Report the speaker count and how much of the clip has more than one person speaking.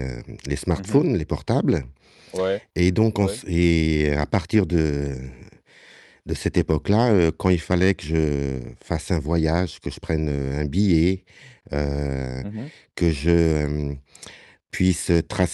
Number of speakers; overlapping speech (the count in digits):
2, about 3%